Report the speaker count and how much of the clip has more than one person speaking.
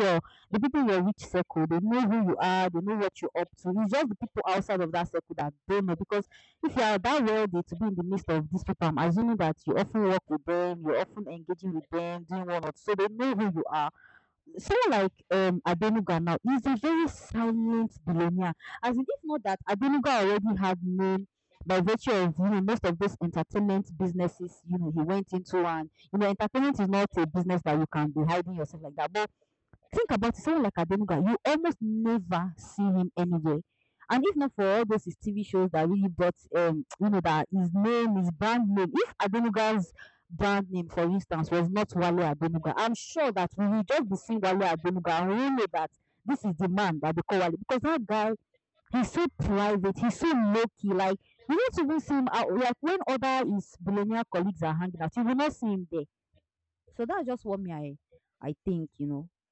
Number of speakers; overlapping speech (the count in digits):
1, no overlap